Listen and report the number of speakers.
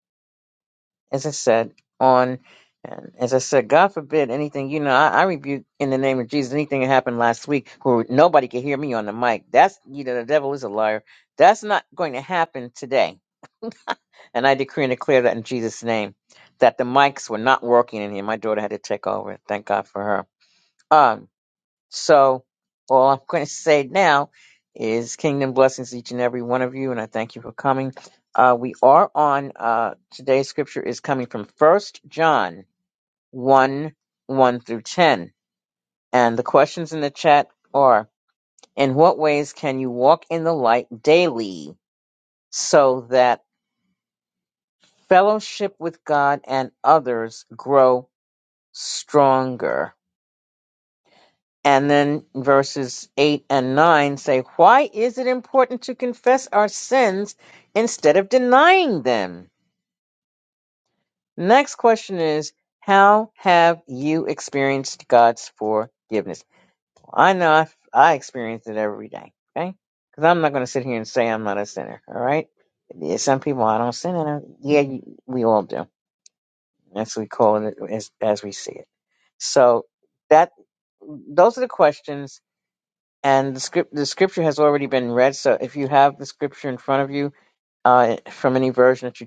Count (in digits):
1